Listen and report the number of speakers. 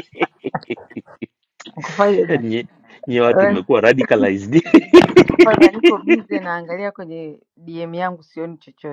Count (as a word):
two